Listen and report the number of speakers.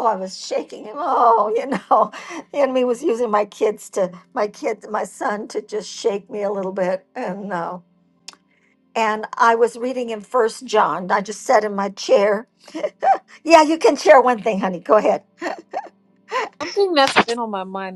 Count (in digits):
2